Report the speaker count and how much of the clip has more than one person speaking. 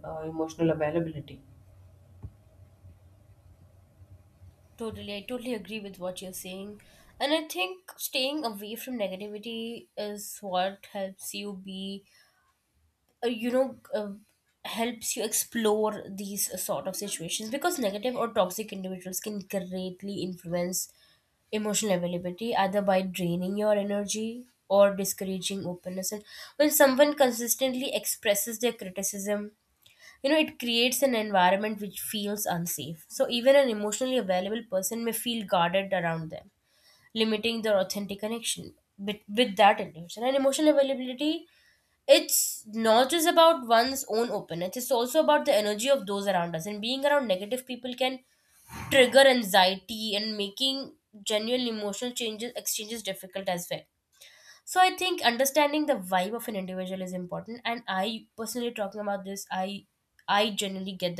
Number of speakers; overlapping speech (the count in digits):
2, no overlap